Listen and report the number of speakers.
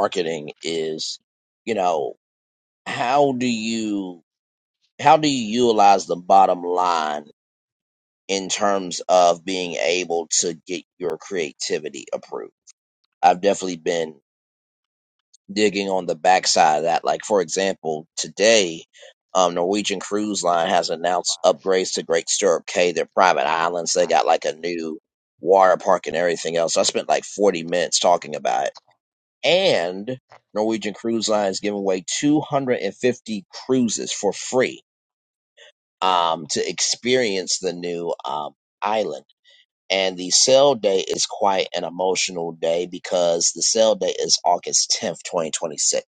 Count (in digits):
1